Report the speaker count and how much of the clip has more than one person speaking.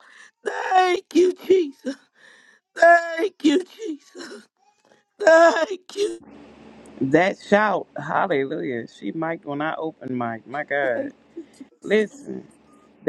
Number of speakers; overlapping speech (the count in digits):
2, about 2%